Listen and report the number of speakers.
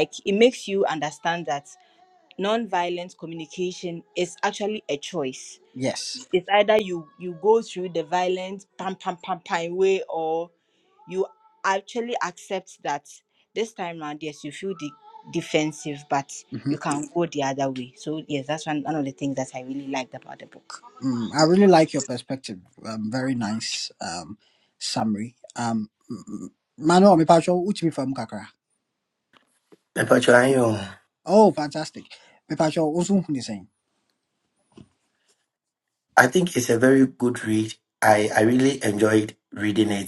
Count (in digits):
3